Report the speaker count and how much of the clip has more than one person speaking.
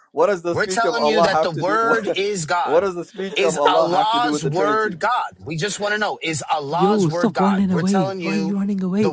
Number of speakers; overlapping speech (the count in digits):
3, about 58%